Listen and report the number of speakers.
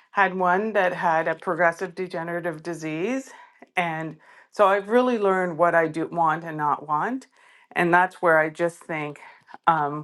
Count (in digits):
1